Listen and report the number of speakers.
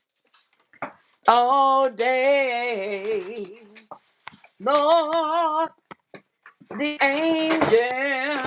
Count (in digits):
1